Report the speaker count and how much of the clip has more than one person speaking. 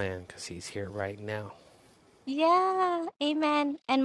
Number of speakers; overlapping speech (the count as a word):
two, no overlap